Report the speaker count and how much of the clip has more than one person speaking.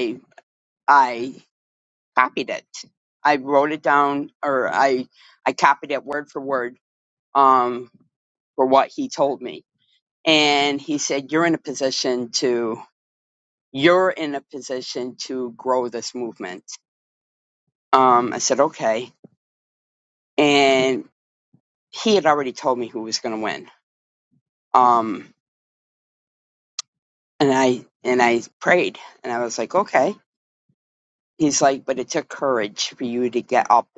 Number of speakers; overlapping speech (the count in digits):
1, no overlap